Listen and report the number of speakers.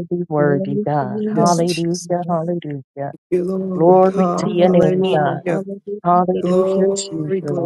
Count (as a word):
three